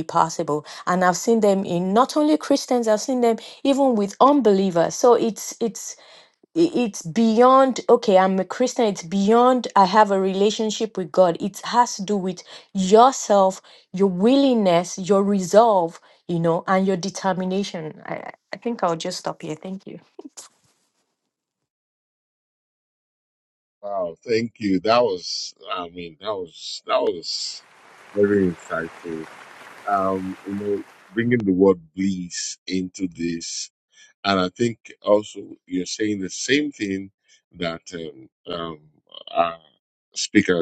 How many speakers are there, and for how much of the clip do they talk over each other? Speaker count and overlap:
2, no overlap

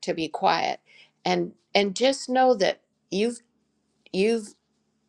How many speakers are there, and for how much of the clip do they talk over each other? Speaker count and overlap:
1, no overlap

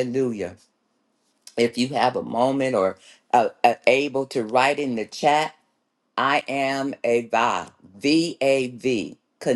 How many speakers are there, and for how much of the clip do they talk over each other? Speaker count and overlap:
1, no overlap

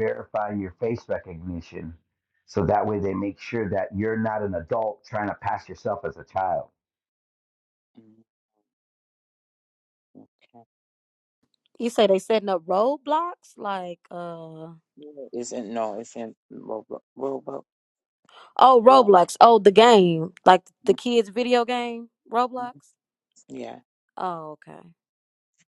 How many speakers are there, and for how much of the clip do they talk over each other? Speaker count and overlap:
3, about 1%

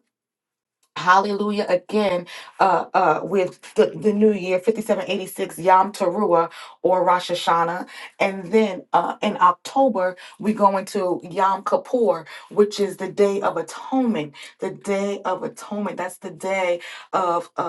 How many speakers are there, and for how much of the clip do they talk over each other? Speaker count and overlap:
1, no overlap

